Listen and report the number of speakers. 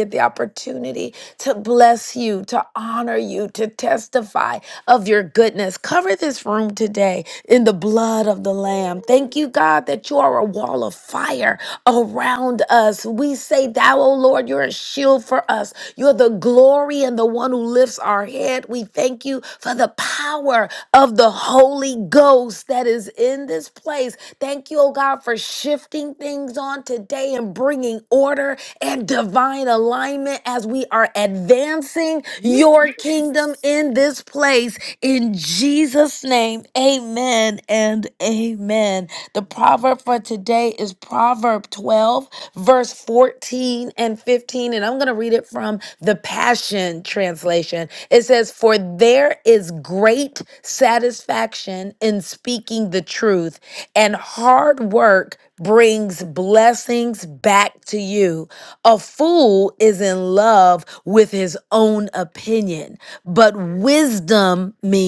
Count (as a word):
one